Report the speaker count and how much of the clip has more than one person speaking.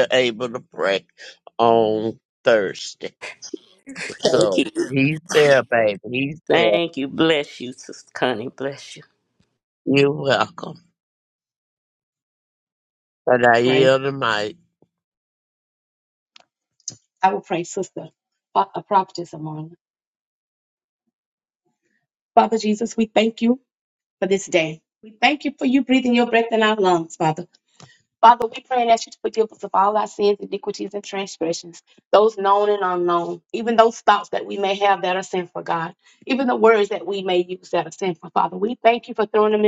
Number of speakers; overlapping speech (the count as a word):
three, about 3%